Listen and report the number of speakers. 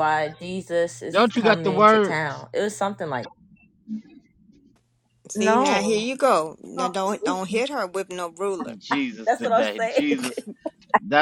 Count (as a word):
three